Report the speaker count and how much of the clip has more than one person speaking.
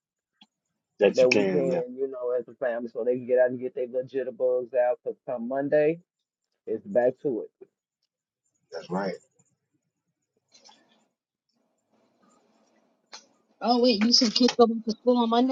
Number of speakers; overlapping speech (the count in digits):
3, about 4%